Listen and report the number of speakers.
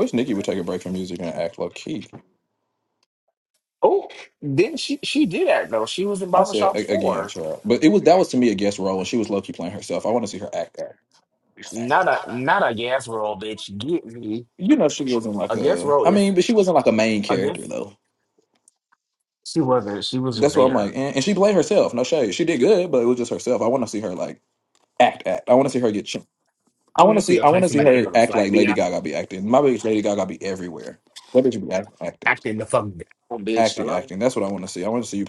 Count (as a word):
two